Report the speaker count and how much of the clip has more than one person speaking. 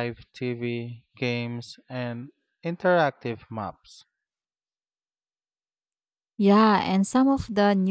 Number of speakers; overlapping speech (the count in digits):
2, no overlap